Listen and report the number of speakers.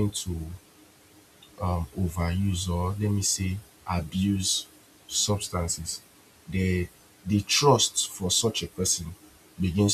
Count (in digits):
1